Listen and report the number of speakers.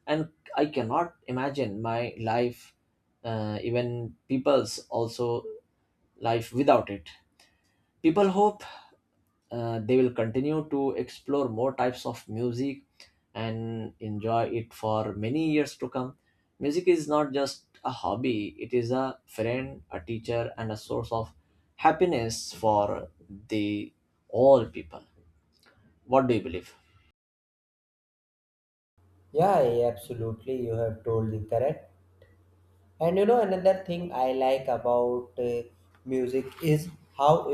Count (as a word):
two